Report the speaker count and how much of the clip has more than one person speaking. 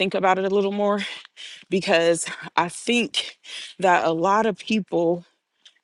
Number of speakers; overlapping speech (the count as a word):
one, no overlap